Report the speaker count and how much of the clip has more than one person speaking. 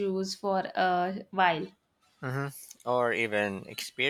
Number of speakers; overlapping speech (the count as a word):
two, no overlap